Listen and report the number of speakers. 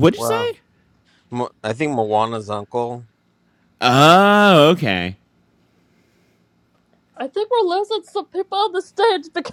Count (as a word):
three